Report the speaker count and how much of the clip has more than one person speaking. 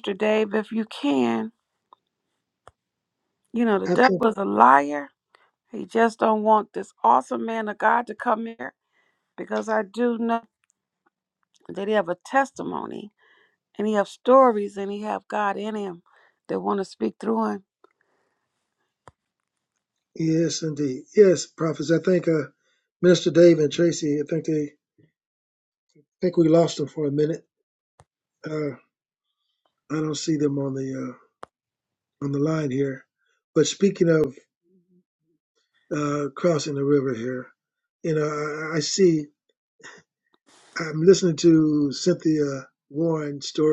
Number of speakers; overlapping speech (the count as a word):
two, about 1%